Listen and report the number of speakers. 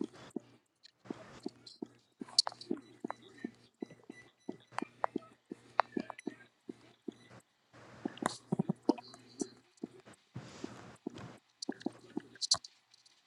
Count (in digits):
0